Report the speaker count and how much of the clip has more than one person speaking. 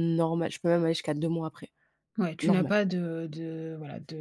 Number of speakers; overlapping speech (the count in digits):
2, about 7%